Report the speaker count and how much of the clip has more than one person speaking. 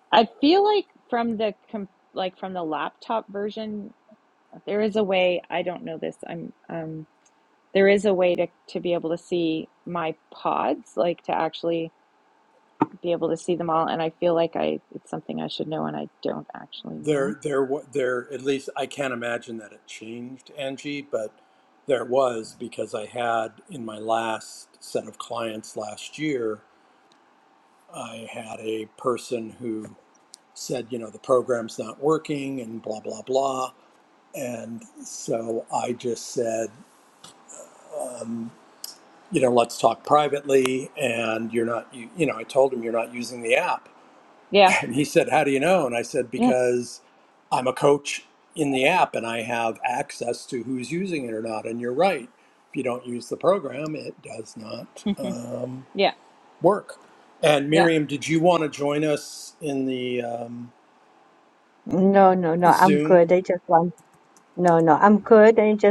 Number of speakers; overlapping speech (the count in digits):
3, about 2%